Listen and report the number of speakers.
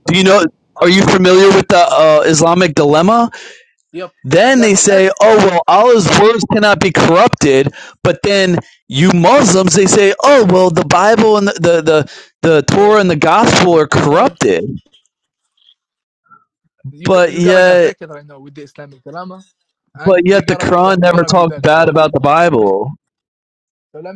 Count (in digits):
2